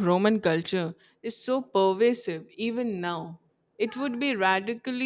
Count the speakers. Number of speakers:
one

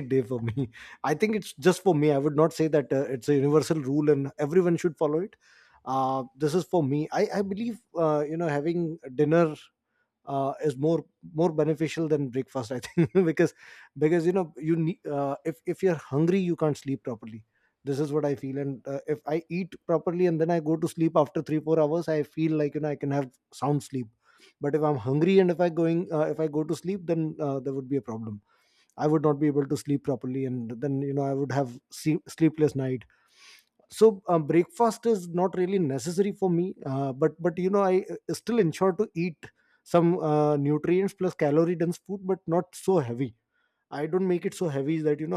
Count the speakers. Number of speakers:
one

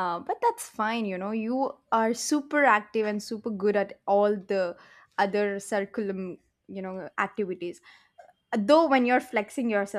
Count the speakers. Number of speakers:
one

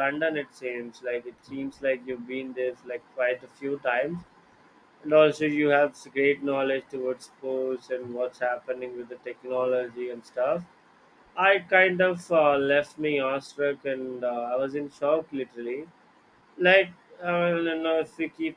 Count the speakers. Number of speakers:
one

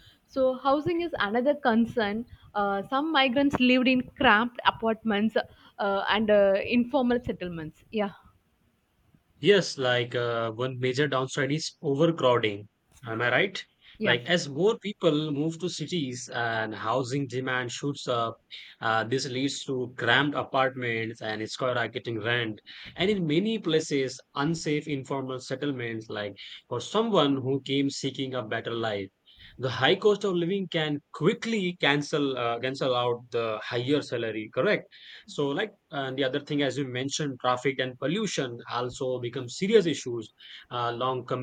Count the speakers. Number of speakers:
two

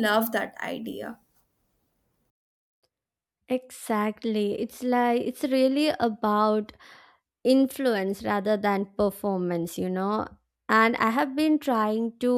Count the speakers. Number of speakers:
two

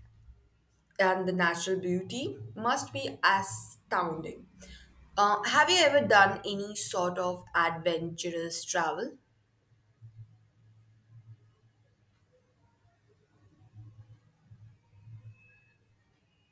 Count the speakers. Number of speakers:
one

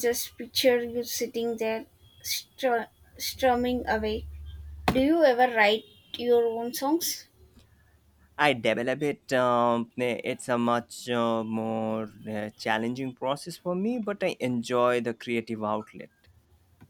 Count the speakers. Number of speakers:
two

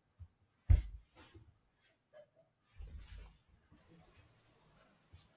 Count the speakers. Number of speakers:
zero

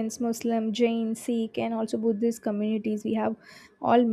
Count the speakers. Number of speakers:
one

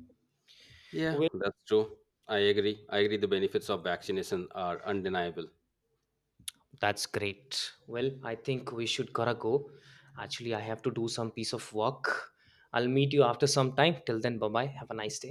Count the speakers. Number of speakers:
two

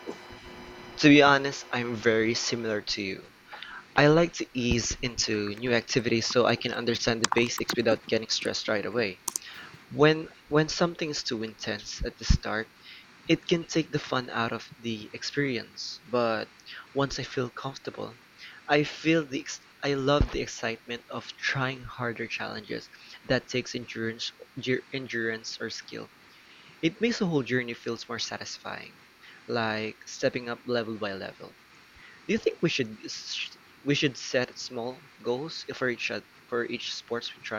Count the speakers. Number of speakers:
one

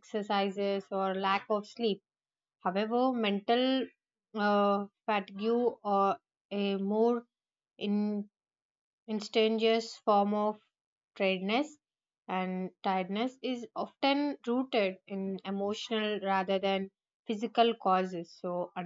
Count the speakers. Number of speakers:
one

